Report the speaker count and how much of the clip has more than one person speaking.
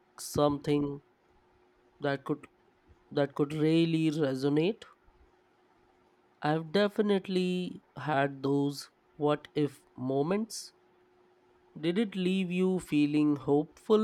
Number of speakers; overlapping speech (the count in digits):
1, no overlap